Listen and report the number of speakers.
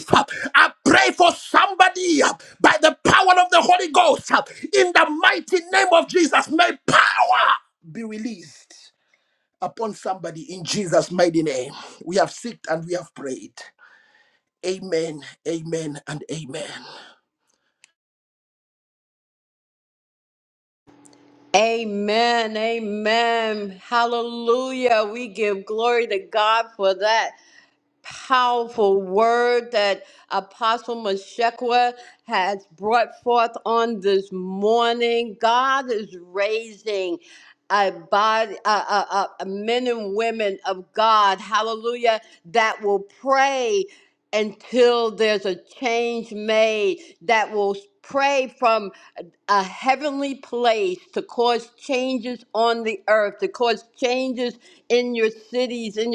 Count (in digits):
2